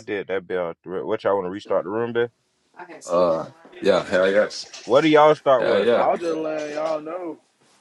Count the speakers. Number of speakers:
3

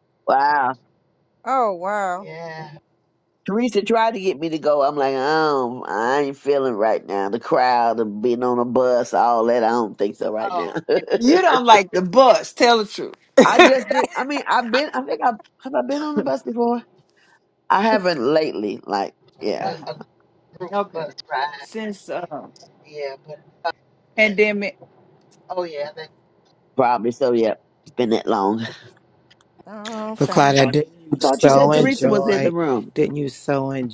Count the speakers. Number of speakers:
5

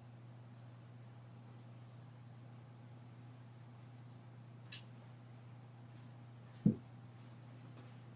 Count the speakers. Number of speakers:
0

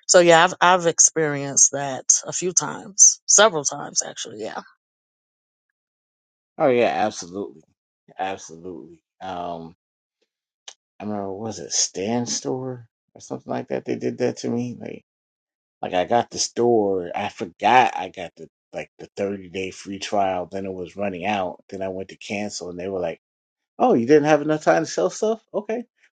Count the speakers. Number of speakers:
2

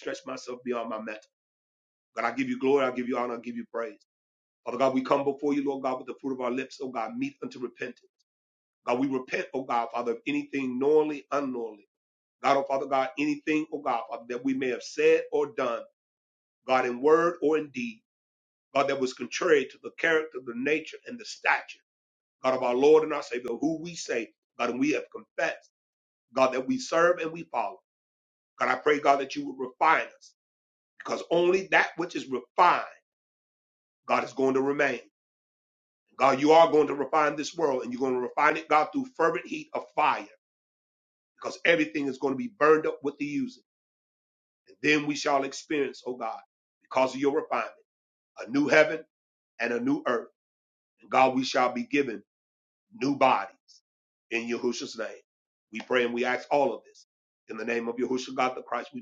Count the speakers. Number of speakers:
1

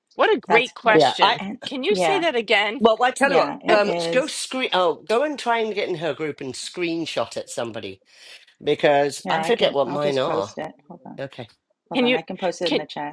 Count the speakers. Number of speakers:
3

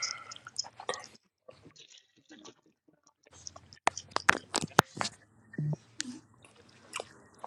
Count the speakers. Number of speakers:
0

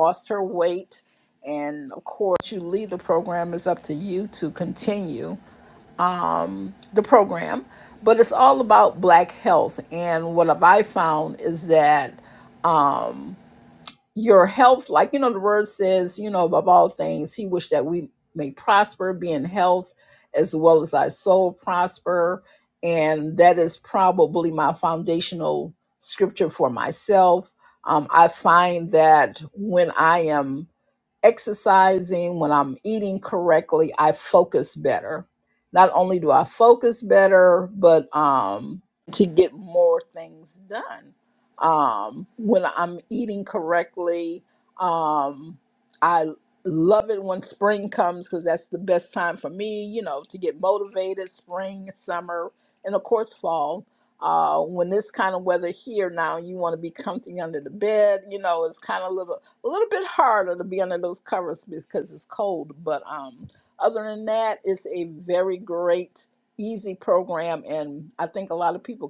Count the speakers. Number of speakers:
1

